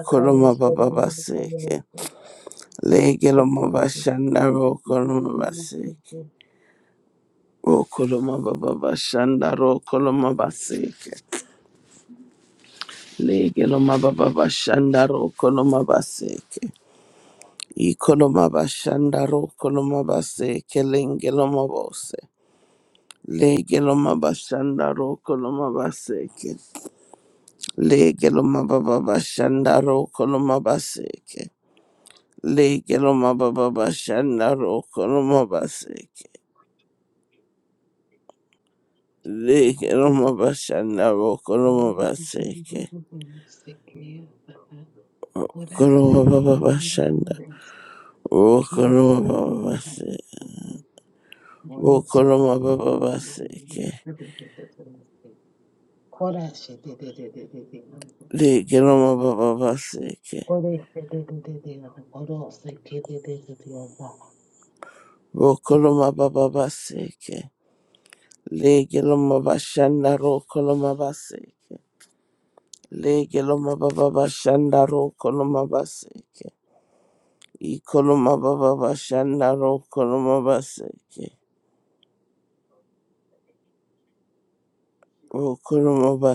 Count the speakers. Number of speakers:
two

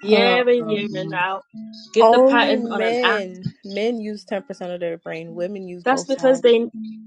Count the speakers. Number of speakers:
two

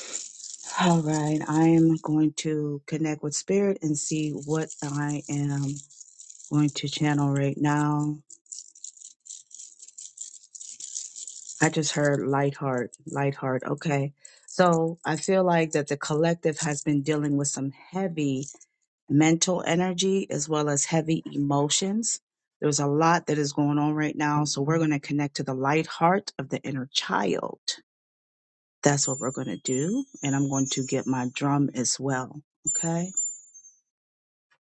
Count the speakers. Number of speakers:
one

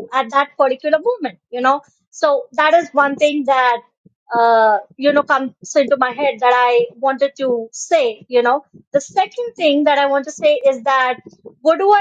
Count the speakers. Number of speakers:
one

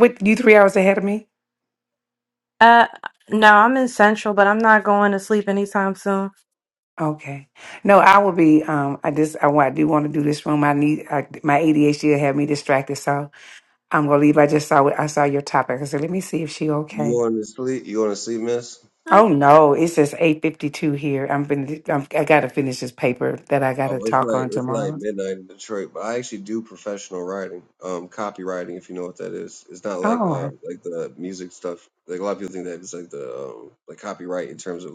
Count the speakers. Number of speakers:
three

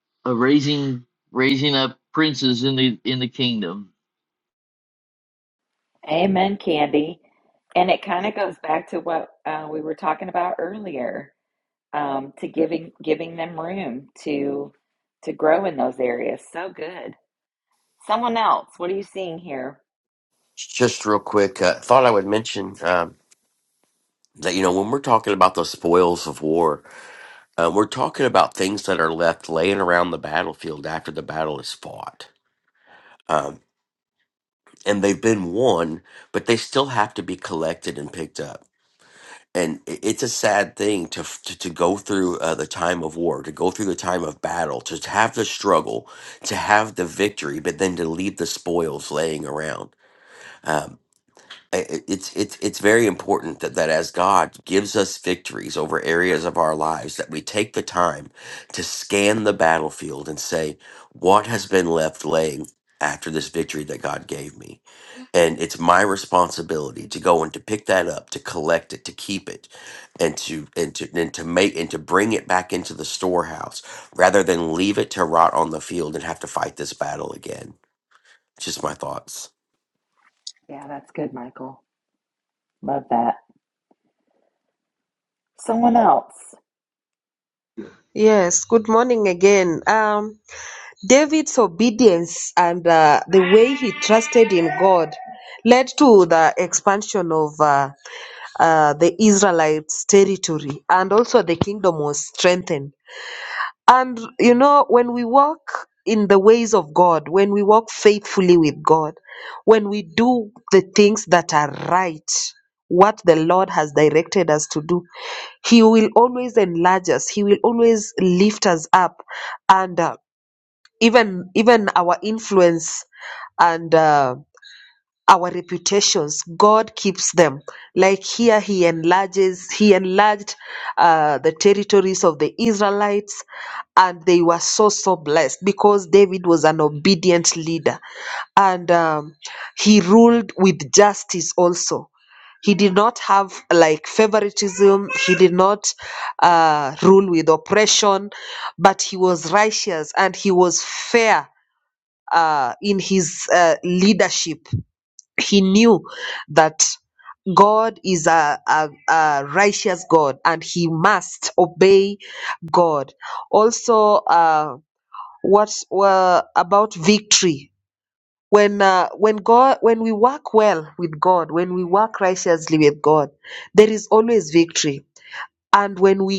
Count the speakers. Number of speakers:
four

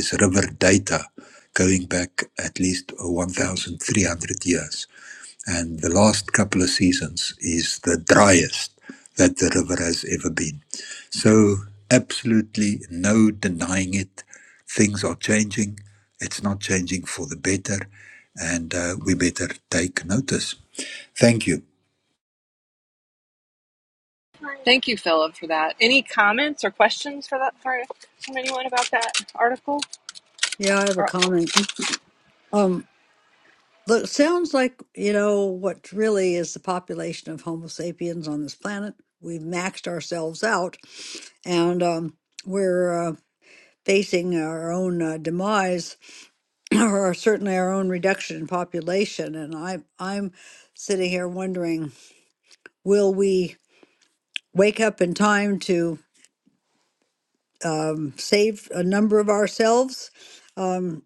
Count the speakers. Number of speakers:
three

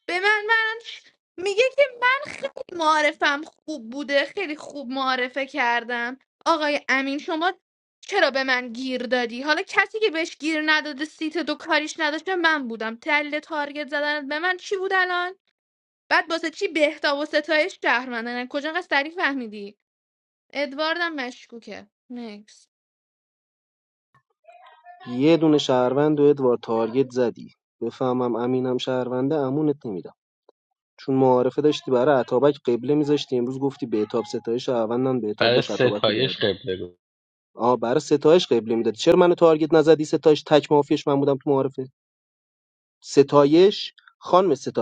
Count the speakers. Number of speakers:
three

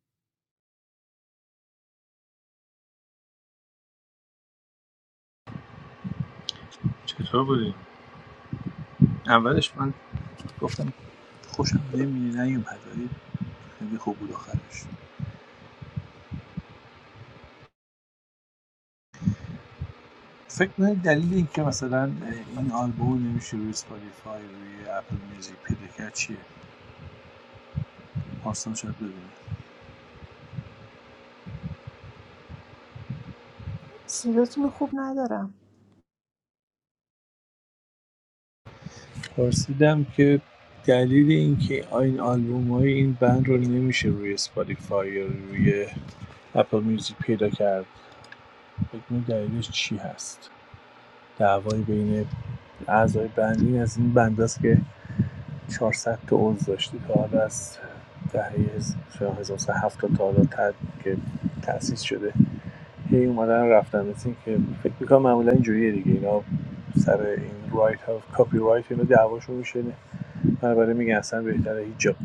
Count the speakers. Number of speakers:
two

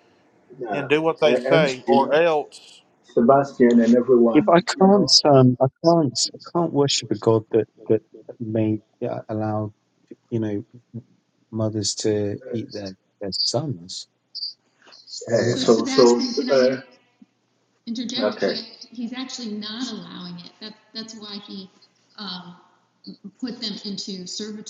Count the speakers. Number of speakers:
four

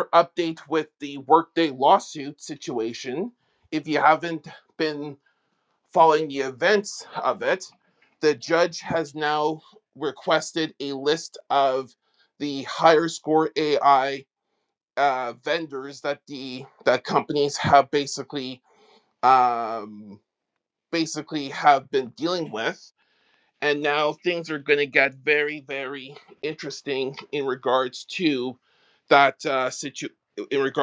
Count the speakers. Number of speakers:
one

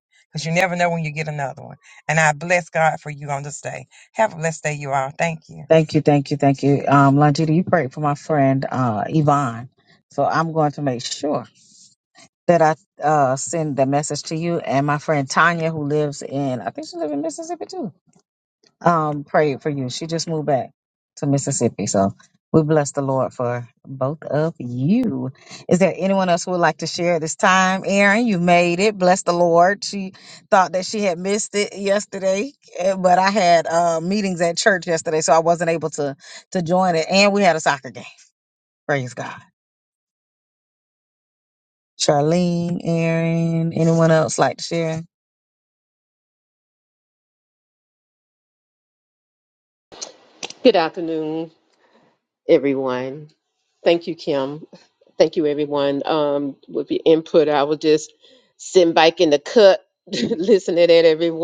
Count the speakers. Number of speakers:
three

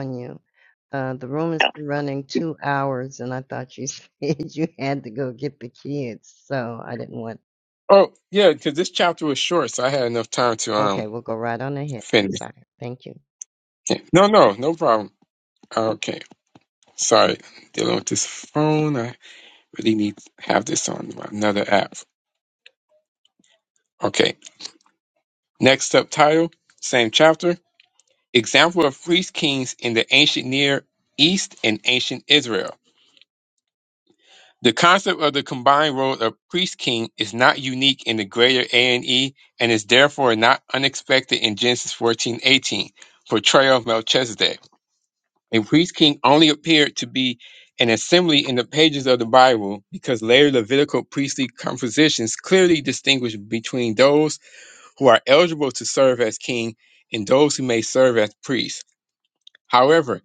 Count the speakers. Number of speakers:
two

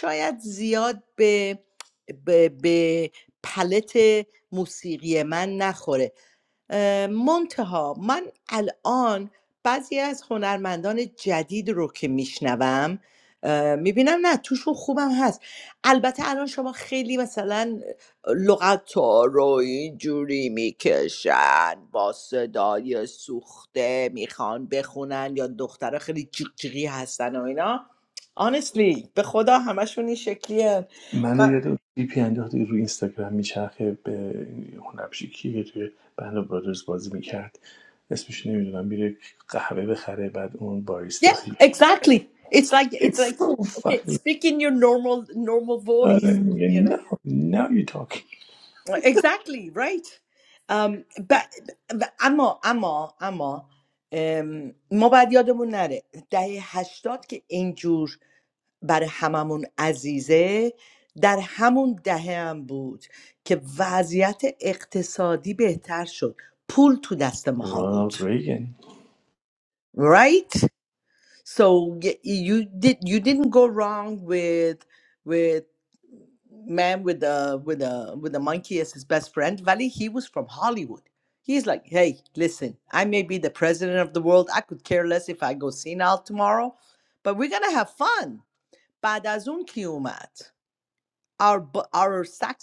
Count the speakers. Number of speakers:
two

